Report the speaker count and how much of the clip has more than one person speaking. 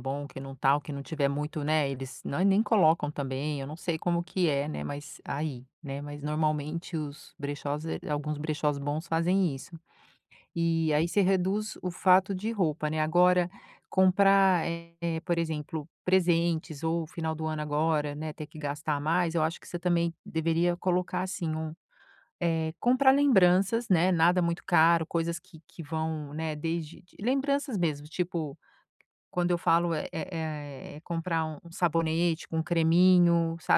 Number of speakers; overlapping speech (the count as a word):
one, no overlap